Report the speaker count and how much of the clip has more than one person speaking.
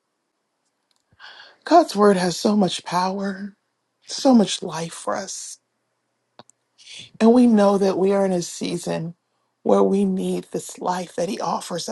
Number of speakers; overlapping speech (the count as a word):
one, no overlap